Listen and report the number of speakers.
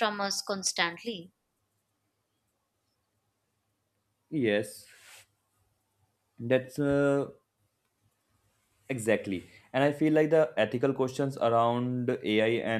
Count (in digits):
2